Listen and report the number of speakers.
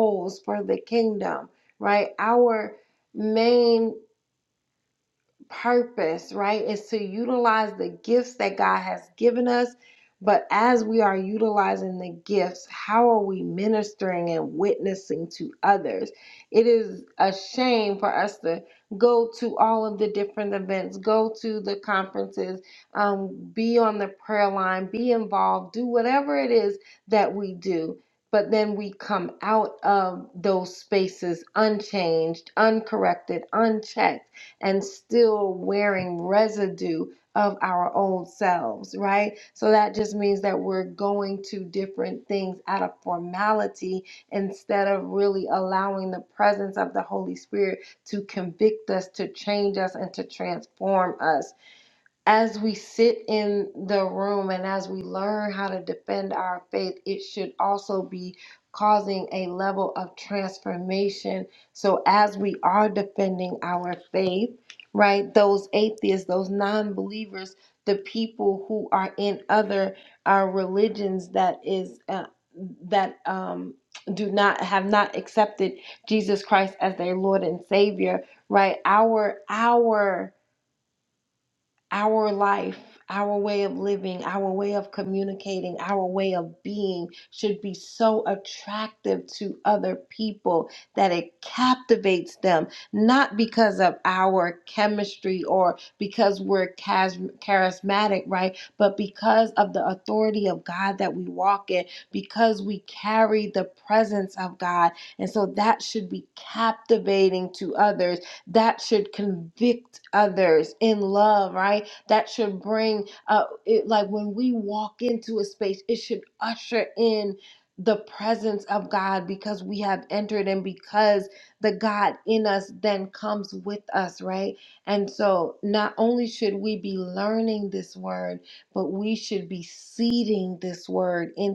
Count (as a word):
one